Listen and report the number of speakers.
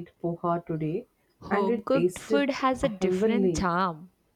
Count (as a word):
two